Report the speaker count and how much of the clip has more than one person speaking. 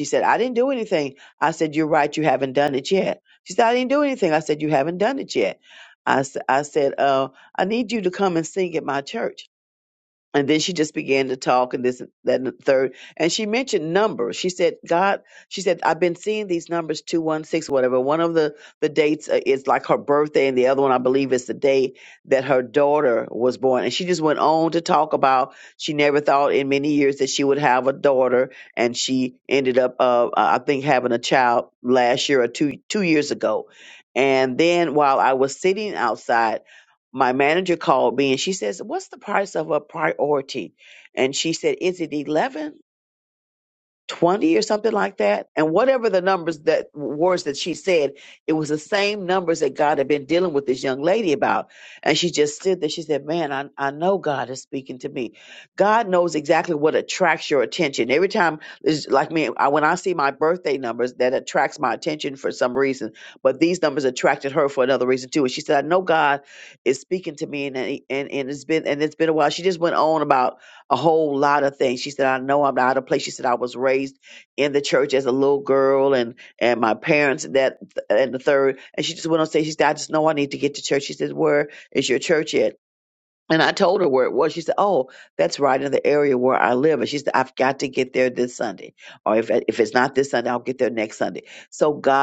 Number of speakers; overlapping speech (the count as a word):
one, no overlap